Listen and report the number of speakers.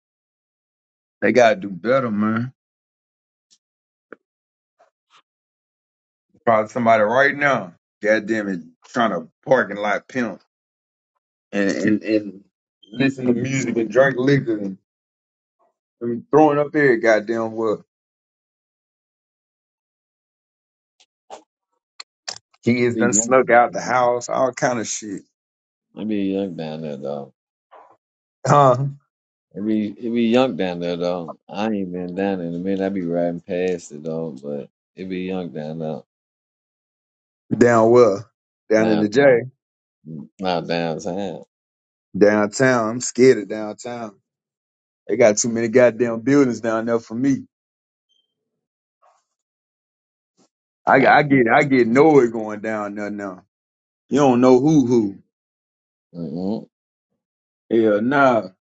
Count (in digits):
2